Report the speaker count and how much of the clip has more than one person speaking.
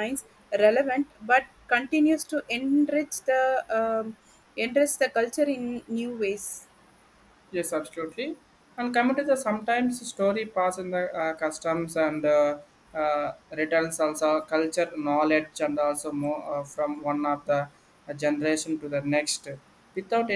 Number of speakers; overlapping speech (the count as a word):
two, no overlap